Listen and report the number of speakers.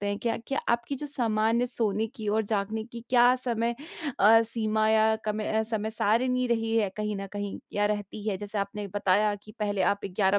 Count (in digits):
1